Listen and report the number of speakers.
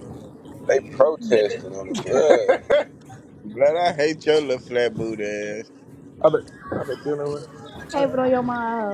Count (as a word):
four